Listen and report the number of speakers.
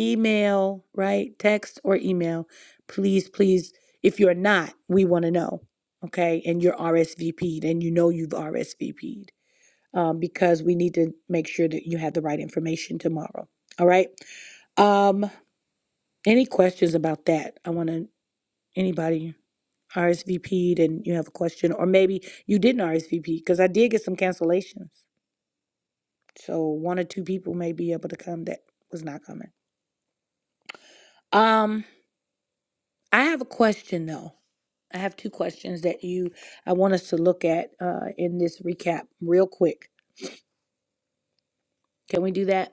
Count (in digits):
1